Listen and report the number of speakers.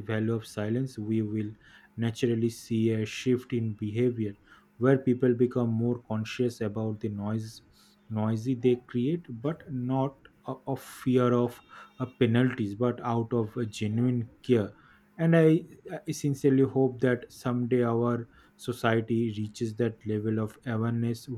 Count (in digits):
1